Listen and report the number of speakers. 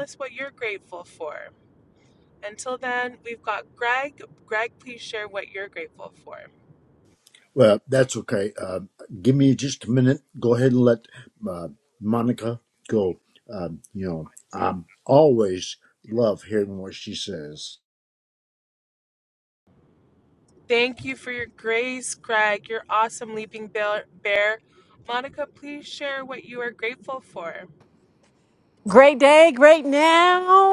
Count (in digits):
3